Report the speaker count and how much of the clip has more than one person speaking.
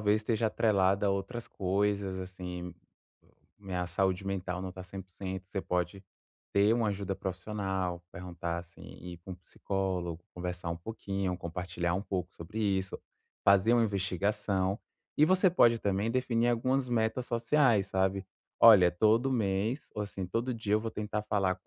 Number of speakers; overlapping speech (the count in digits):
1, no overlap